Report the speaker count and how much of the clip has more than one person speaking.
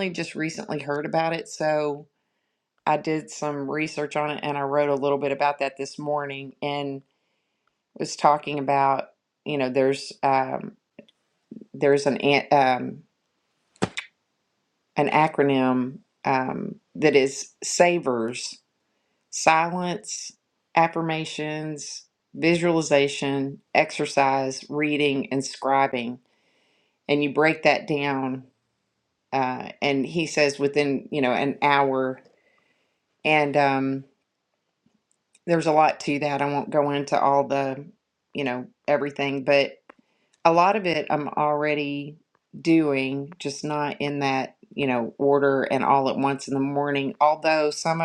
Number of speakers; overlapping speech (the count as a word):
one, no overlap